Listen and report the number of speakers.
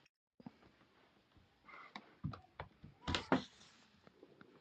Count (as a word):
zero